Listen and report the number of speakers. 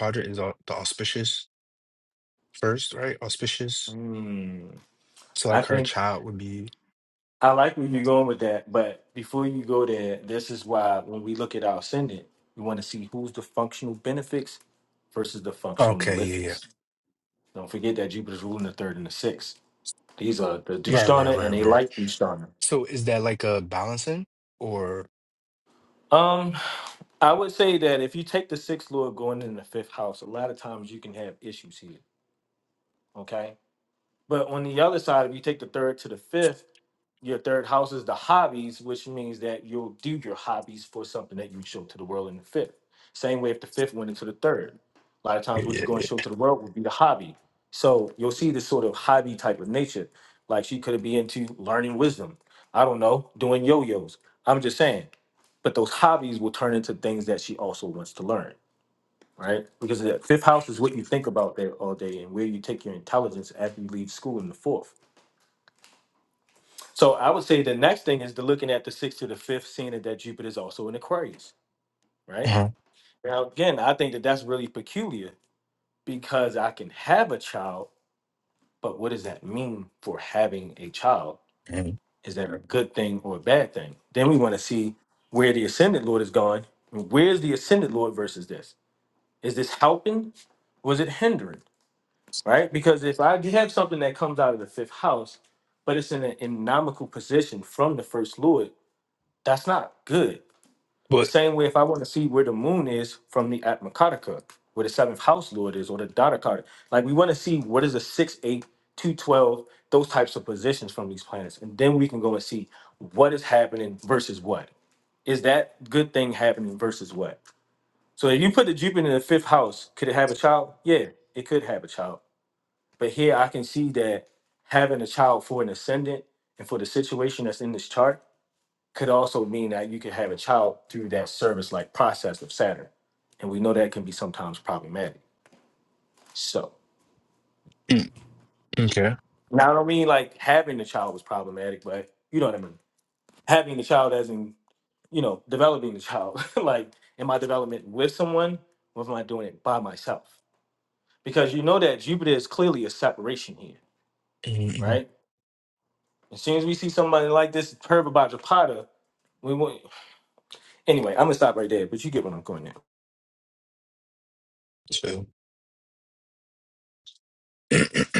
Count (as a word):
two